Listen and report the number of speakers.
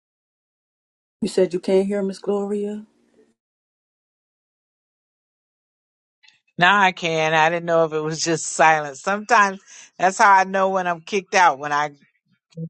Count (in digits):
2